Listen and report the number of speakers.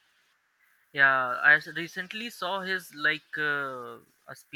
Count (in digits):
1